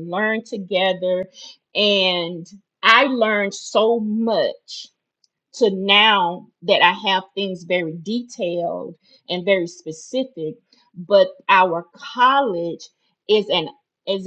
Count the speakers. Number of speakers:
1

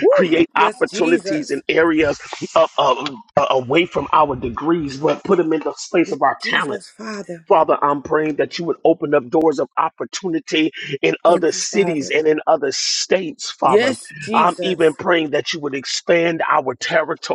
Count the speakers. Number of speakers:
2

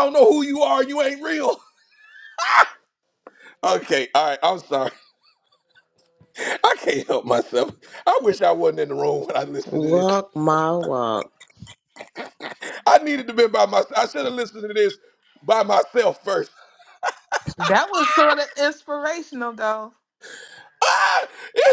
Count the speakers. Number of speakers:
3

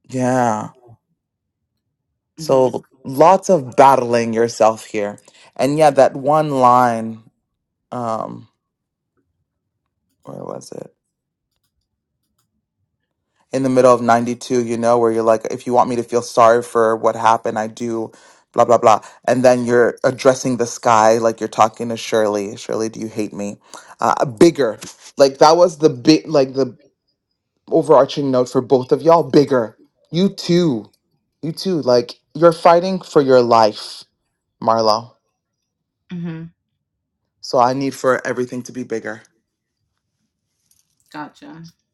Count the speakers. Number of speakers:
2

